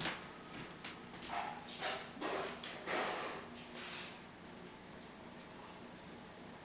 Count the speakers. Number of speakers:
zero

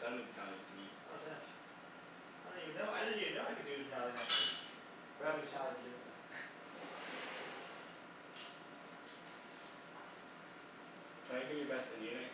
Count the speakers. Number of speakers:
two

